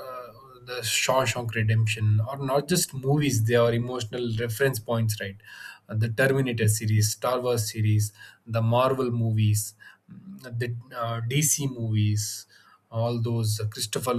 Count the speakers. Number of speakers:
1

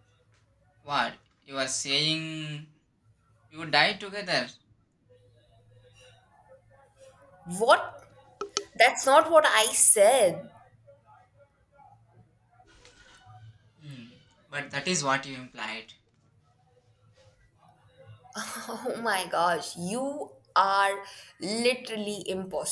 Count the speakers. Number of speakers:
2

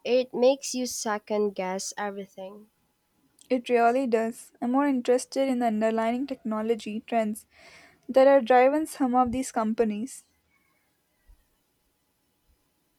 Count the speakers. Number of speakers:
2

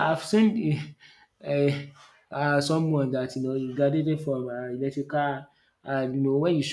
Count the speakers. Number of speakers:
1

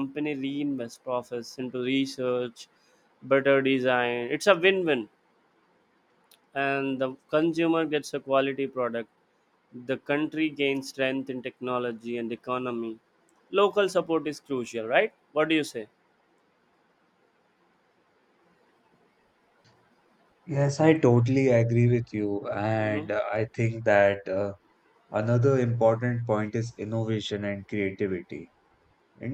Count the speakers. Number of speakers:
2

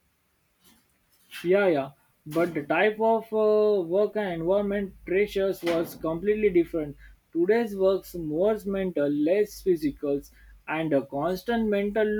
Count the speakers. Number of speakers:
1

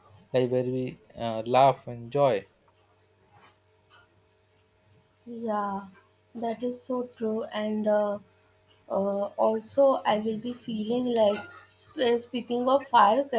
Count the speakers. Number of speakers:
2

